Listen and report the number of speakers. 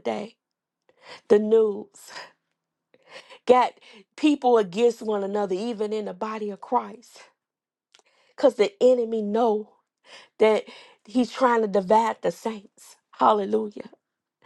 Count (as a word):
one